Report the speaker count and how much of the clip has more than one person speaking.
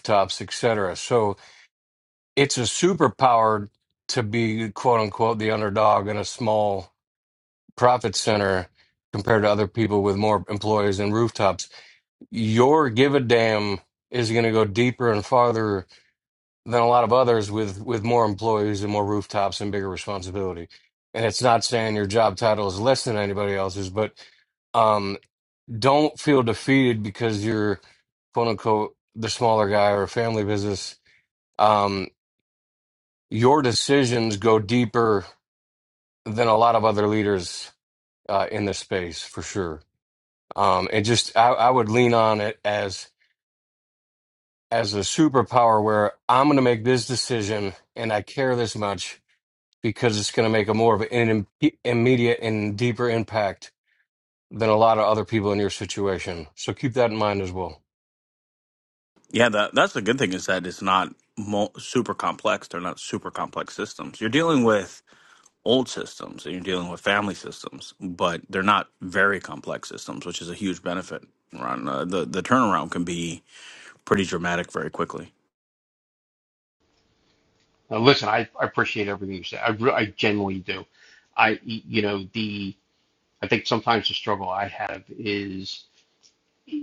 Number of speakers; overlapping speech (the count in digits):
3, no overlap